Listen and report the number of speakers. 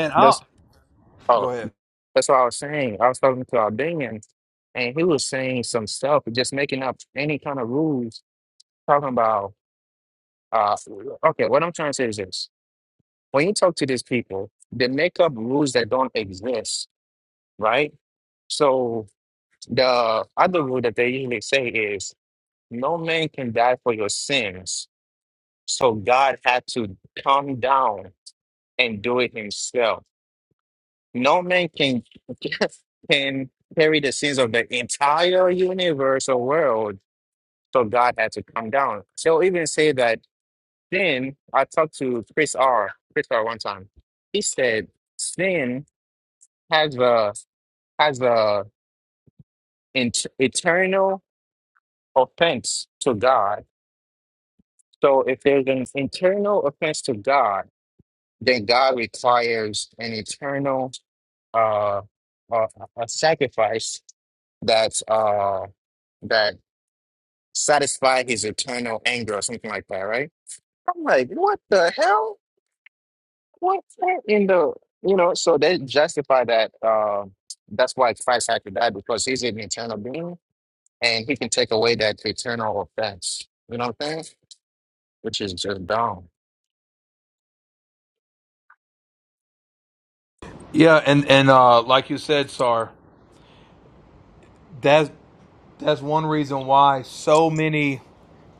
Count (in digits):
2